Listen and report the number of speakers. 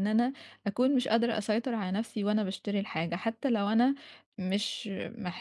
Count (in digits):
1